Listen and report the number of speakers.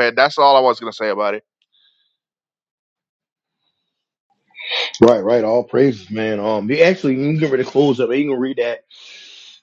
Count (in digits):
2